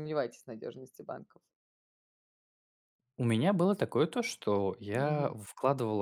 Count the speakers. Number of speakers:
two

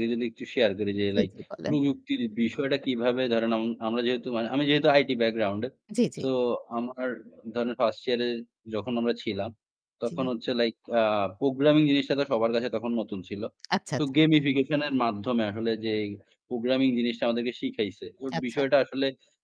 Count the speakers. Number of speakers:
two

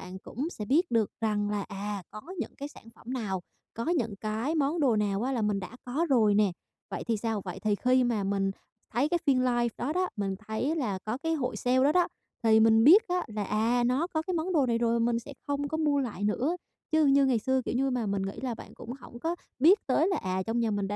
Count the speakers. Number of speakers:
one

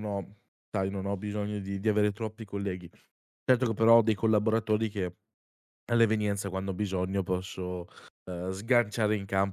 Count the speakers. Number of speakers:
one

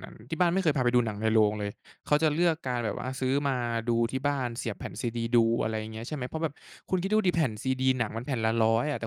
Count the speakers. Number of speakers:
one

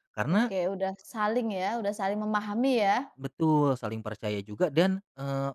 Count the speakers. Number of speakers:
two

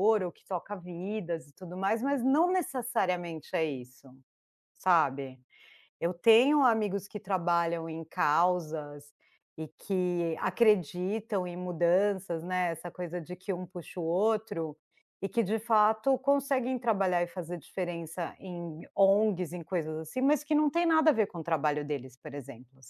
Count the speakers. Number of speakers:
one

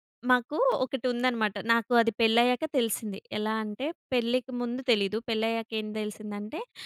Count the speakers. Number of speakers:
one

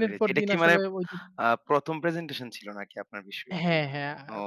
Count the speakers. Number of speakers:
two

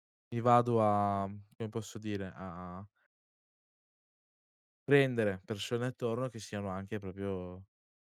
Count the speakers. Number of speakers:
one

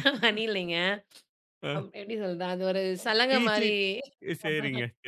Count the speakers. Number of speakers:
two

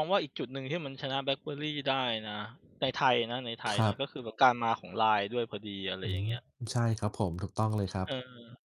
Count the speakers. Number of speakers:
two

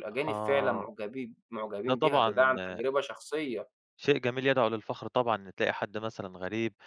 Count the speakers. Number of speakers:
two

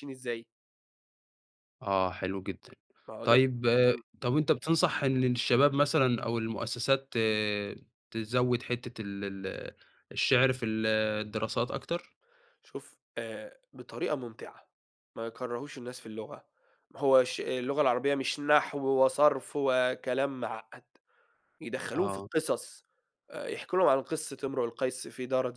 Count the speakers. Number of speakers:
two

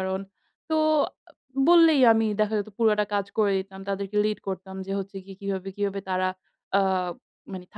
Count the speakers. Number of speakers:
one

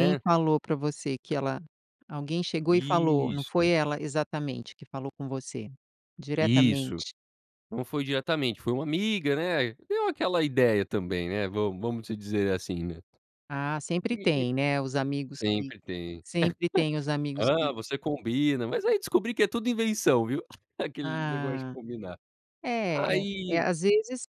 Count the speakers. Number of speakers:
two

